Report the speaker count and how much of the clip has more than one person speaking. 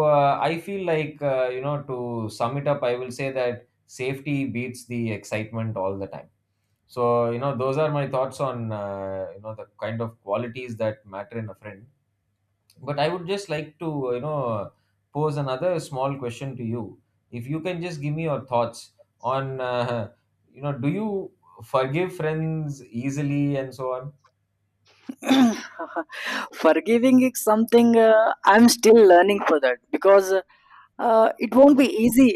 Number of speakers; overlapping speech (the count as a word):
two, no overlap